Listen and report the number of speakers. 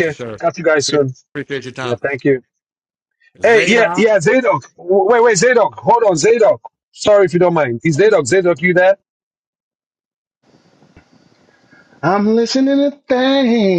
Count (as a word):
three